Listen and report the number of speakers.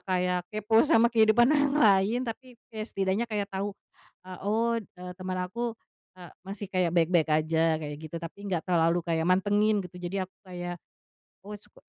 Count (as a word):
one